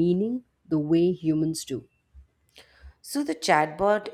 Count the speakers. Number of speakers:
two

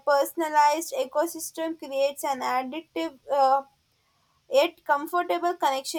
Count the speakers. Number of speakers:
one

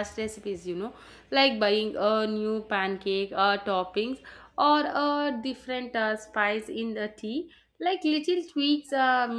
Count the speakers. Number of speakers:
one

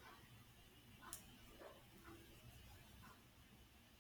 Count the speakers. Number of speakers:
zero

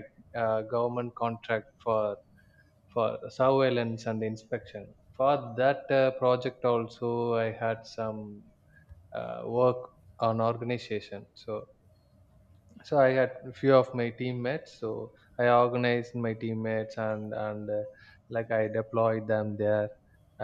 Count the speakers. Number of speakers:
one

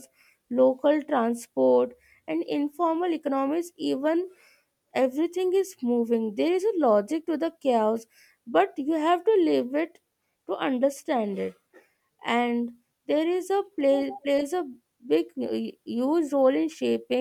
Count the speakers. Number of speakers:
one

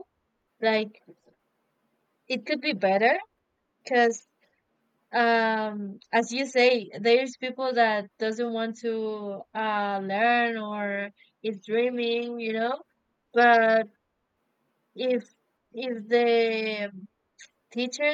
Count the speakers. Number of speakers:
one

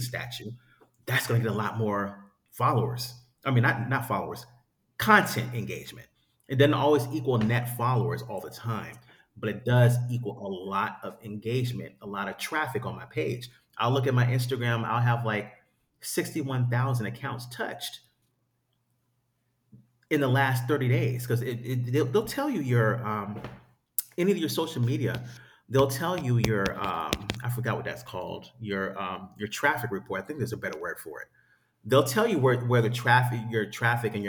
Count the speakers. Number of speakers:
one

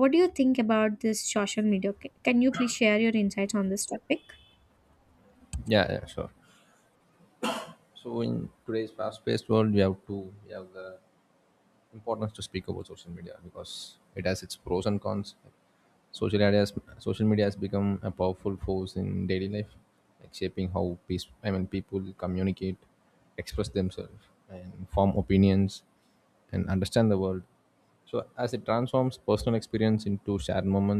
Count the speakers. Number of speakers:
two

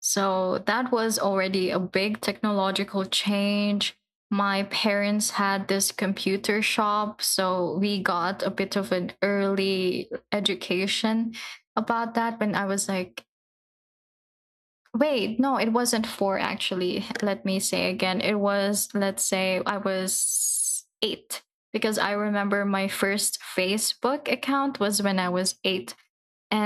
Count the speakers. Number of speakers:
one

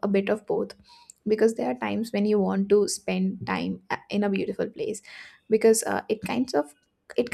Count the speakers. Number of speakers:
one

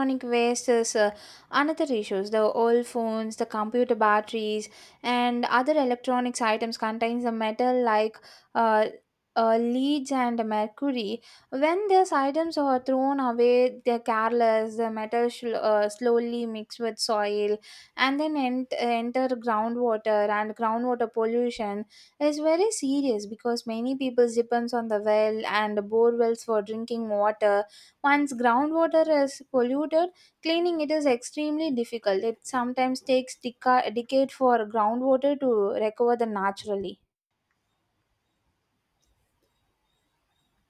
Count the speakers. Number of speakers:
one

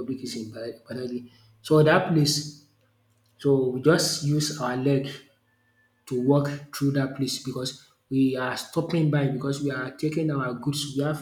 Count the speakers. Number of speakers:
one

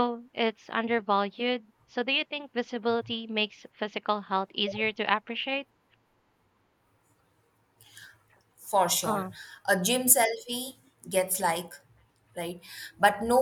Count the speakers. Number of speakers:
two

